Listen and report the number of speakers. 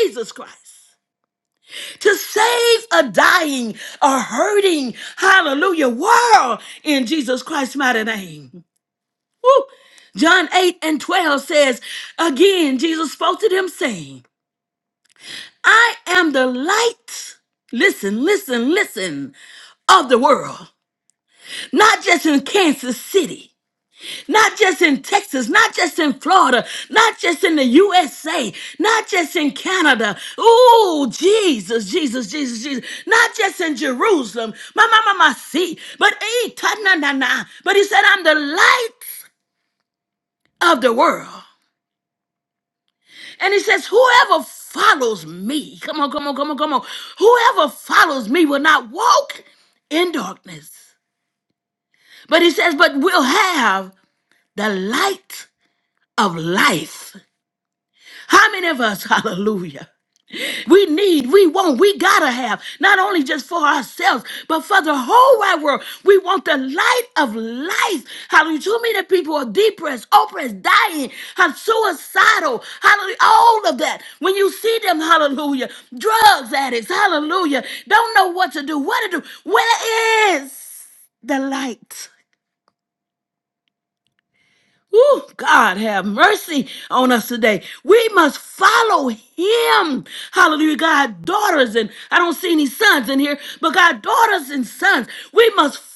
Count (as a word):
one